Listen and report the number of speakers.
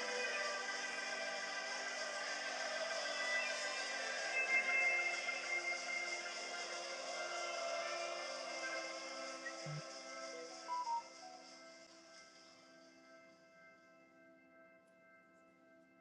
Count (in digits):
0